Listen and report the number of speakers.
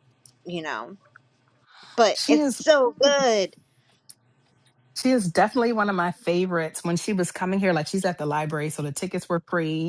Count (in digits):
2